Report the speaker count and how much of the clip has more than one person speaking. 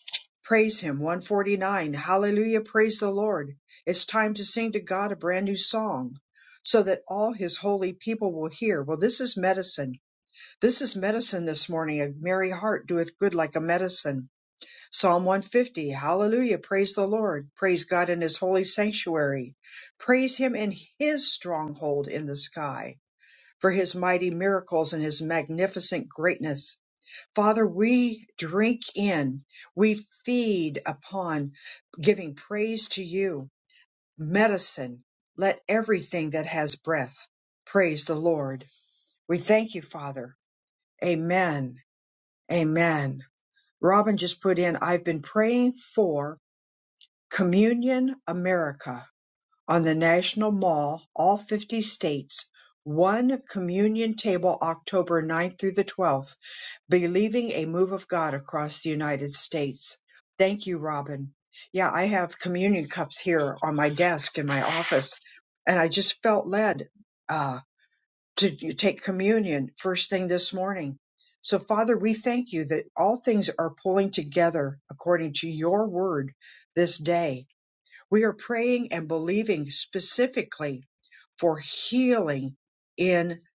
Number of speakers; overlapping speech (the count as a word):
one, no overlap